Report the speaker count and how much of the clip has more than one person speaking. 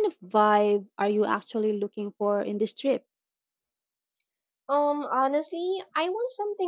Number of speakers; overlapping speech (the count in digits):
2, no overlap